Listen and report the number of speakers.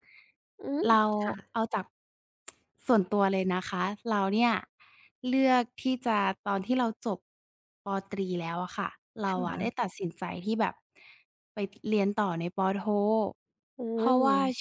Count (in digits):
2